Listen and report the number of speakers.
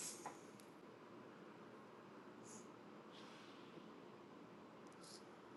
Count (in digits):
0